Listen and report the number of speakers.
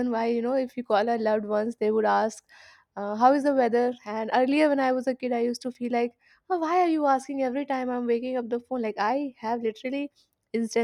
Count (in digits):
1